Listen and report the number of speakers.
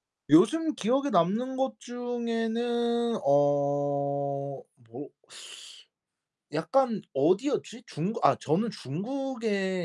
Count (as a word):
one